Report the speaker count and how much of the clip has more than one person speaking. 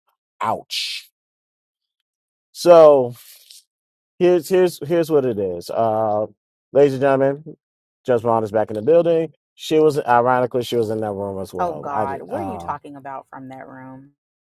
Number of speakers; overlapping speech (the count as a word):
two, about 8%